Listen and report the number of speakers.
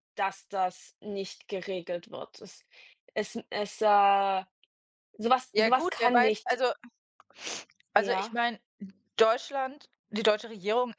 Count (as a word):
two